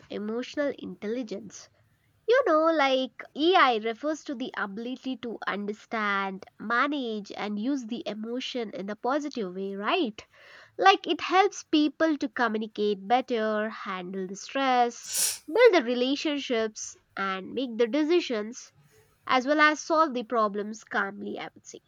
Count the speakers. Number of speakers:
one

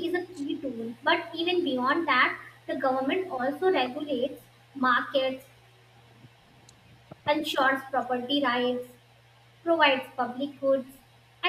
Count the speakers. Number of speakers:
one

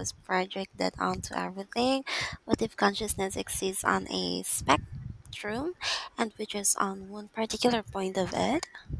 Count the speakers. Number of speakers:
one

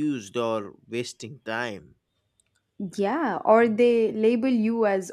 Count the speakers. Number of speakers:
two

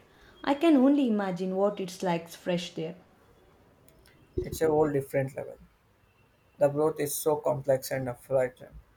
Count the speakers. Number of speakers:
two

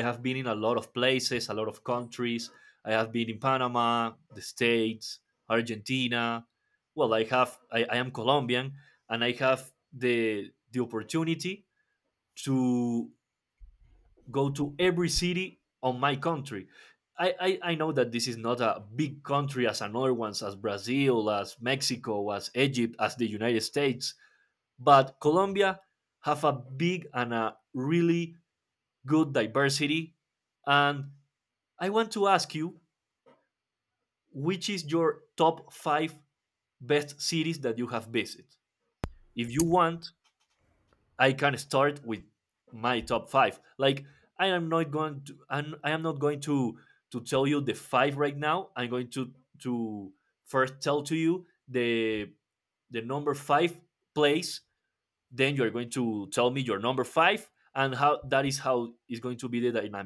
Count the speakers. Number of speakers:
one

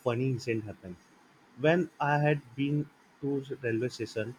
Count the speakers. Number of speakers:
one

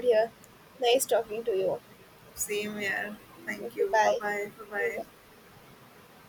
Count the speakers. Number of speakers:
two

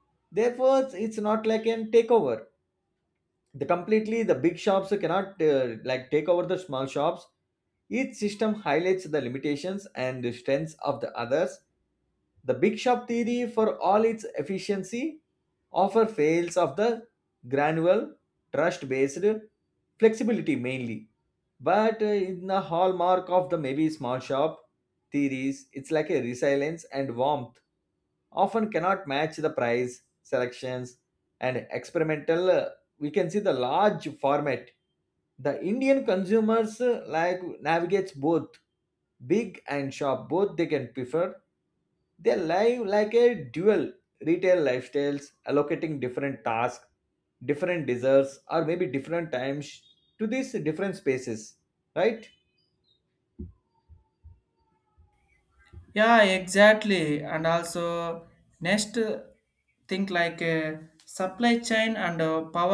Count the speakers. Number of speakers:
two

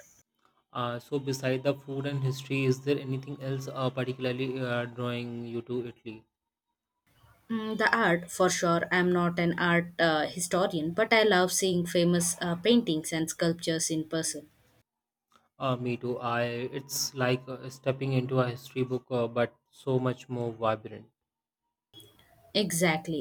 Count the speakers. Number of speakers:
two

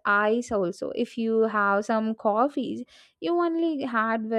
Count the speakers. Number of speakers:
one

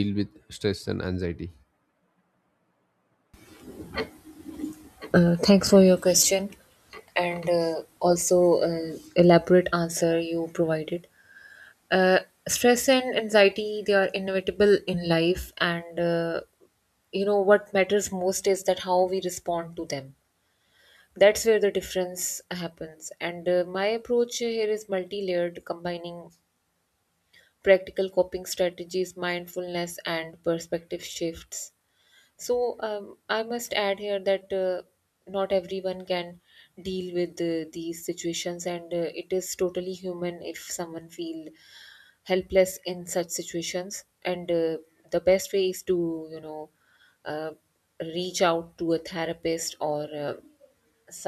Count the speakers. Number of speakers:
two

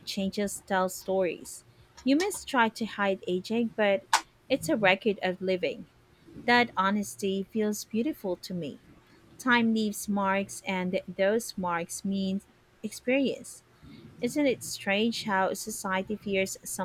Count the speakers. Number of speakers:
one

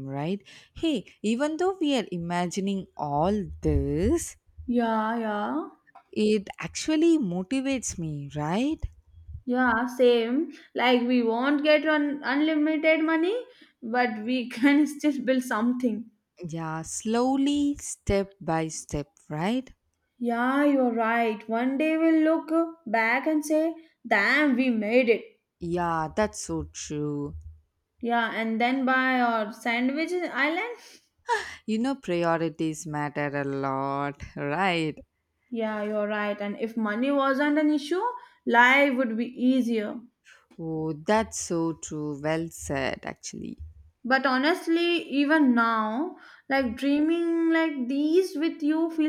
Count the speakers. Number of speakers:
two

